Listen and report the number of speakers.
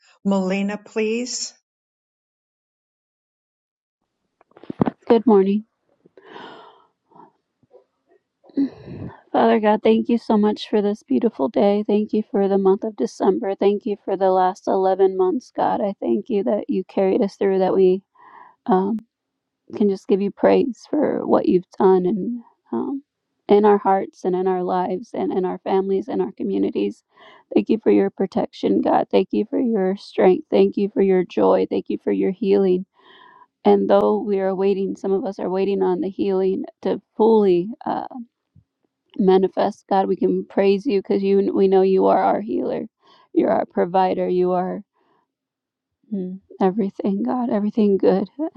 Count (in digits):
2